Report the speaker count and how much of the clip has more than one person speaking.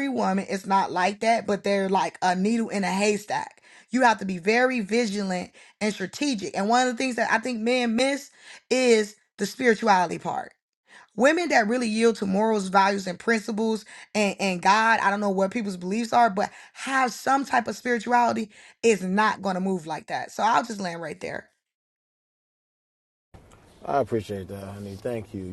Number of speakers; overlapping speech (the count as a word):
two, no overlap